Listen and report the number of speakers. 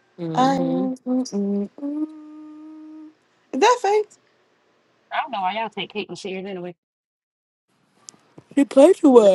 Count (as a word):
three